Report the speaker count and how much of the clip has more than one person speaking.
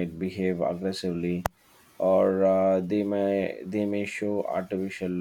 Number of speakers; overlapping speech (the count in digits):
1, no overlap